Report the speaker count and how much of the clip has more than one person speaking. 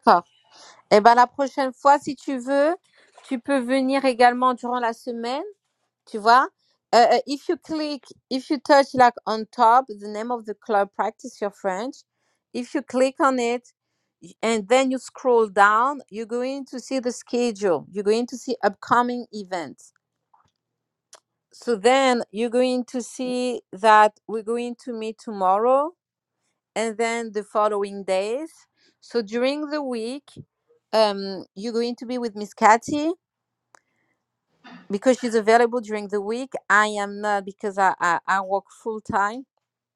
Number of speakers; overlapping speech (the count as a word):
one, no overlap